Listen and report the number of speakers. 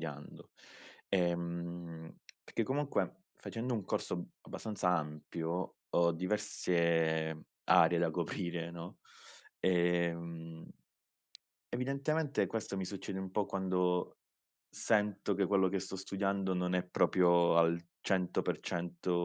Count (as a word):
one